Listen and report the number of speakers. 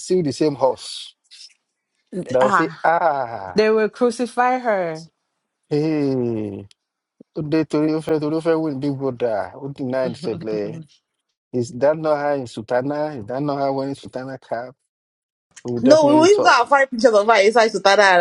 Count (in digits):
3